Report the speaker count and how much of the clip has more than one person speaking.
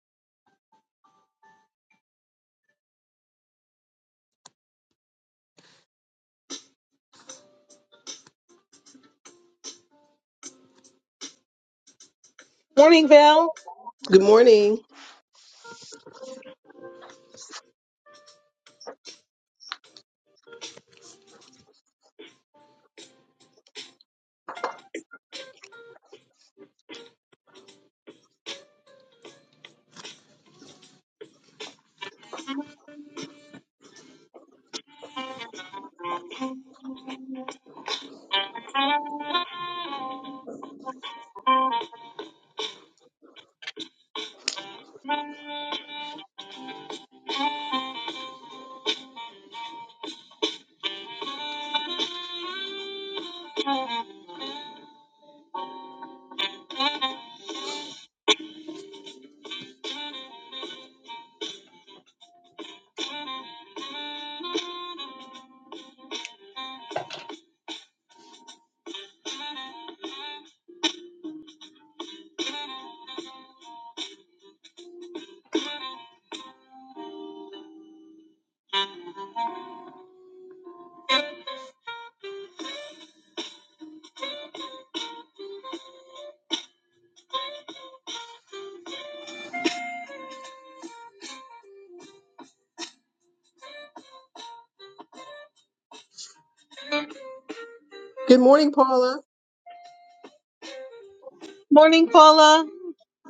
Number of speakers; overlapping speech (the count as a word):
two, no overlap